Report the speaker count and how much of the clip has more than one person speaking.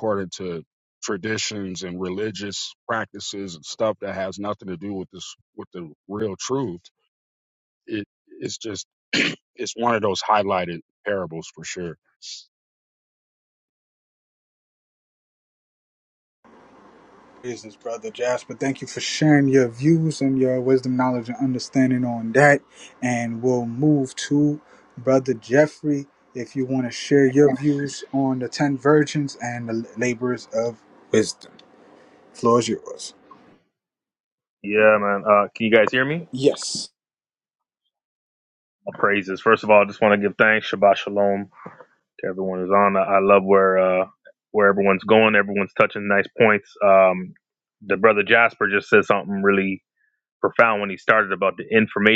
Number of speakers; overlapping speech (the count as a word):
three, no overlap